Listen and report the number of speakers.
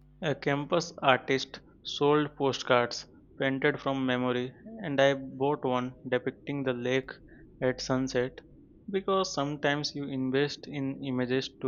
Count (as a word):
one